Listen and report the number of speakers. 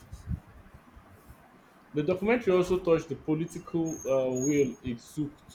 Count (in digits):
1